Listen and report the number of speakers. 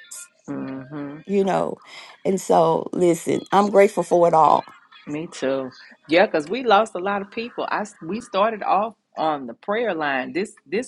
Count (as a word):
two